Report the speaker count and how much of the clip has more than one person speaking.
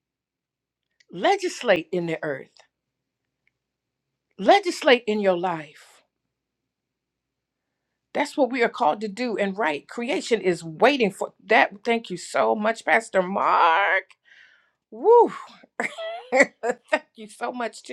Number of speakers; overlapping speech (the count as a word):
one, no overlap